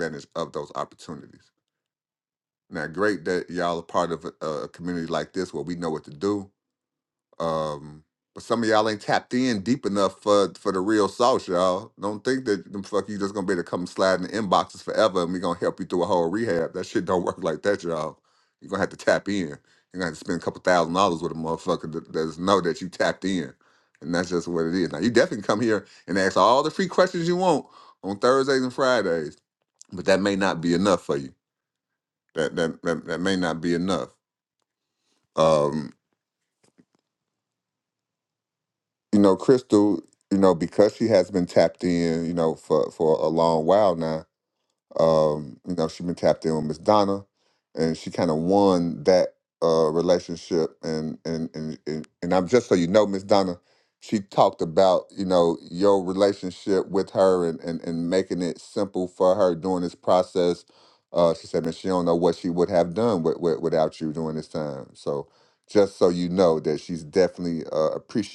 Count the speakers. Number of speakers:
one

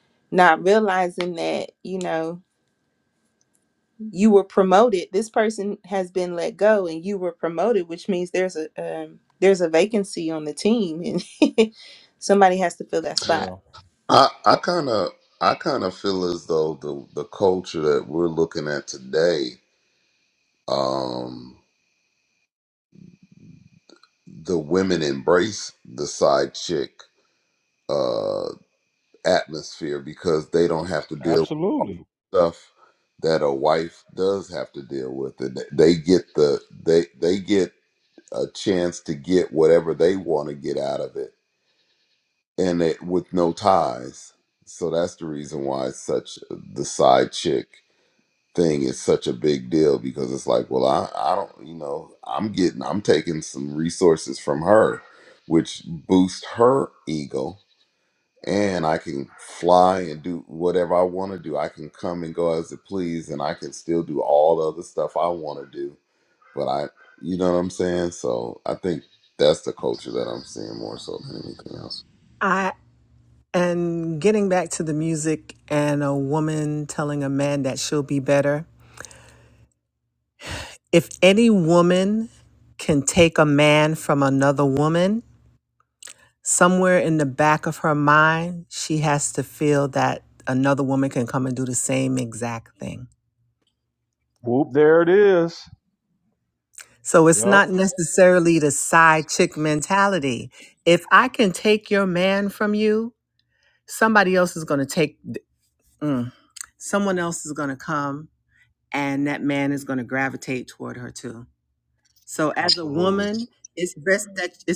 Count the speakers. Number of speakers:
four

